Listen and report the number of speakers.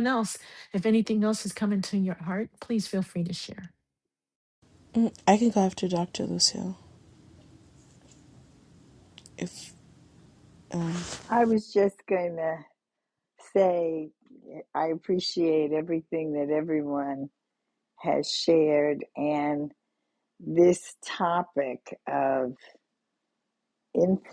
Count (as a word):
three